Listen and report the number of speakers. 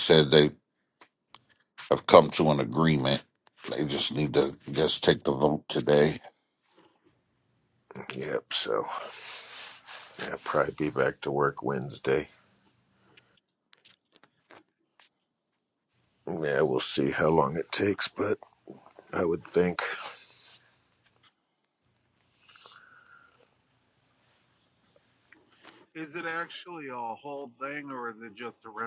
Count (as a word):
three